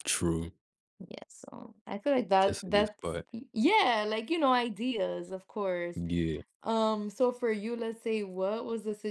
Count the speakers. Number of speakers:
2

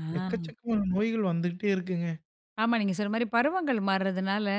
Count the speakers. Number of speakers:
2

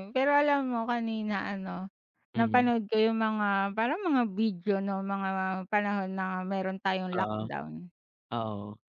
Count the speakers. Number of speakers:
2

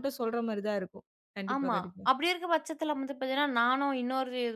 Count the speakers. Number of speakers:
2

